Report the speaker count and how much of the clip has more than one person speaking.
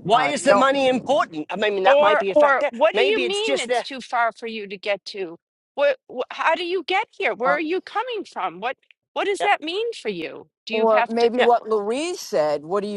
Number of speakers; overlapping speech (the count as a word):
three, about 27%